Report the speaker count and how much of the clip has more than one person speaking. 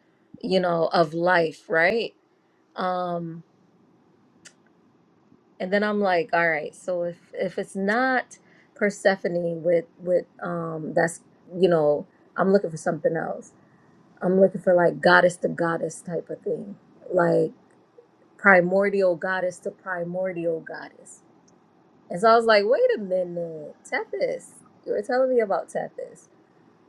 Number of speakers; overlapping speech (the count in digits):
1, no overlap